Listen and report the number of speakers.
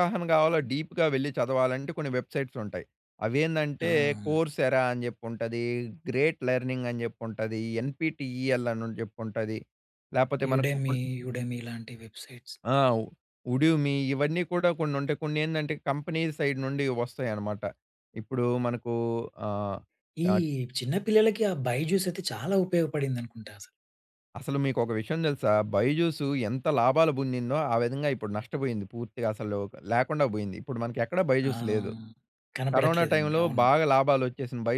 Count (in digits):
2